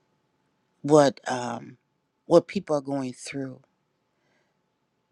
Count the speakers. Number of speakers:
one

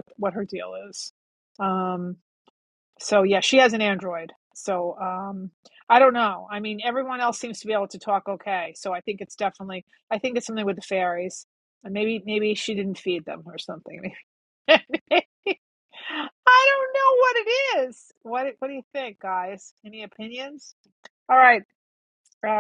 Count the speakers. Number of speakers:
one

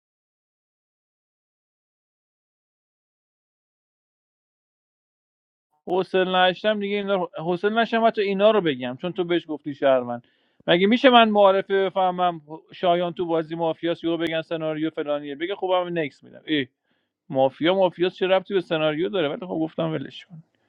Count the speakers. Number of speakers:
one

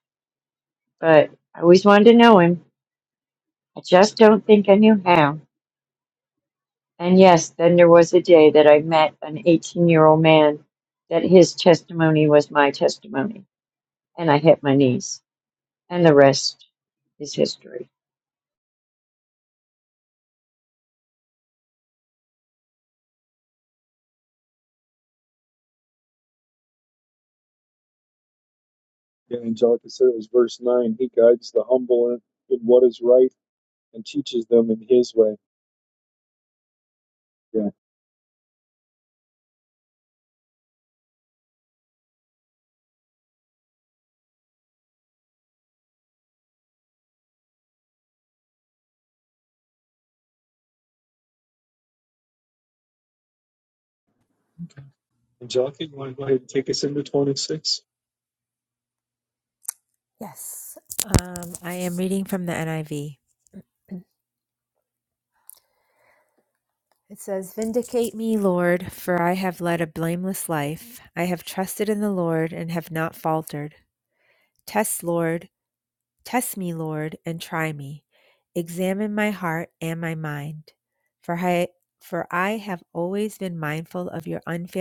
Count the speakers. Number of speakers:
three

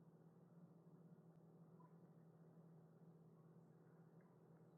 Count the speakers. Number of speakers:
zero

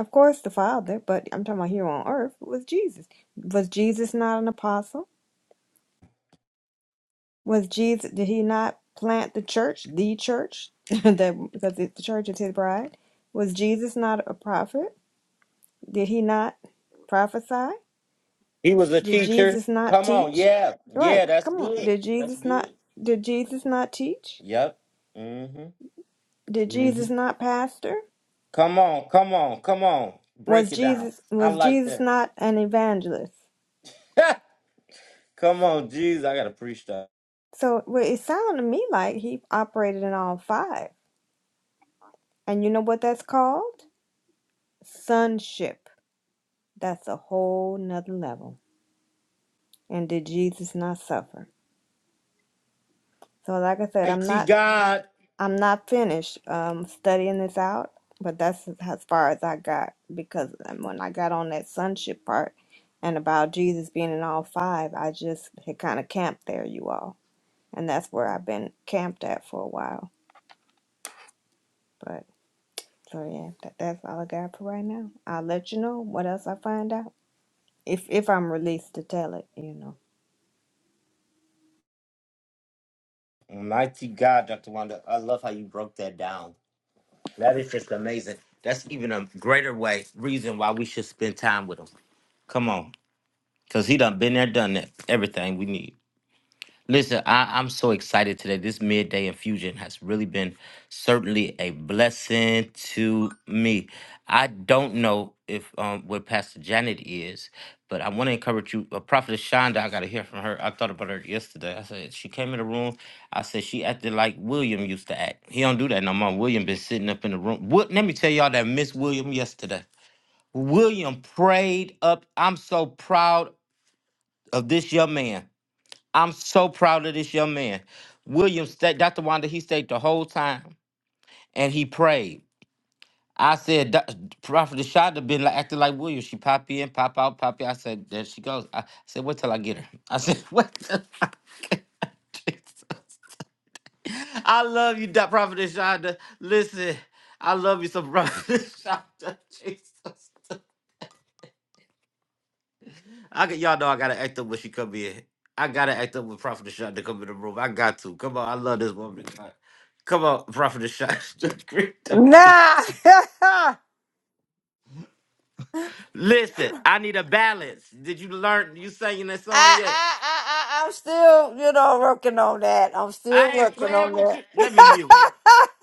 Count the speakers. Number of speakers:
three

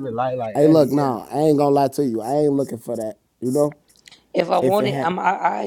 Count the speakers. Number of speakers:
three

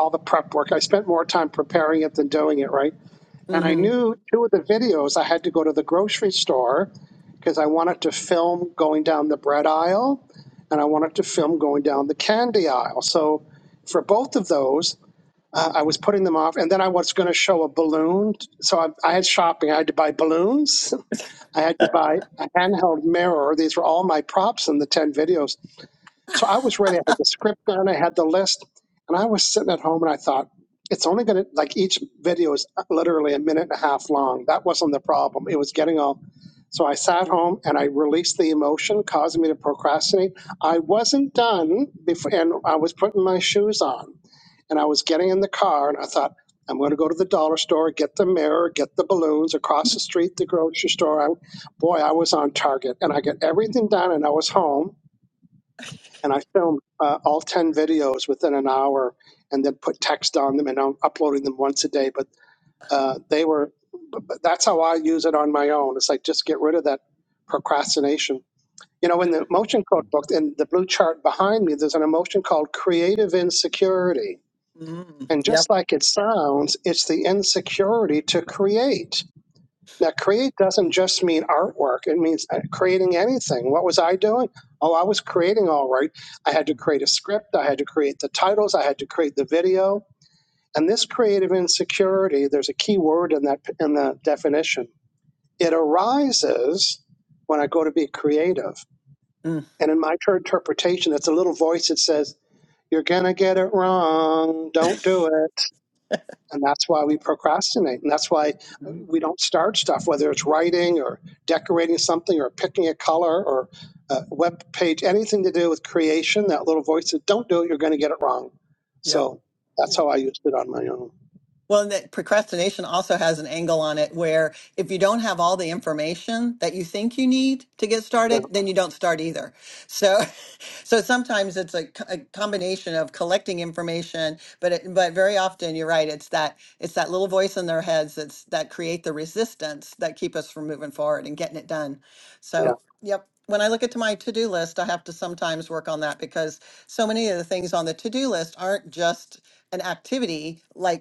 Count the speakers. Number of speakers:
two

